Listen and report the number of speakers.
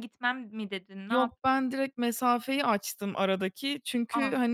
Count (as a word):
two